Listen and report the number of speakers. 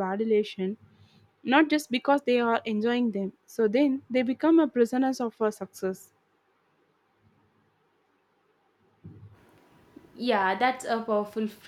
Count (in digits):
2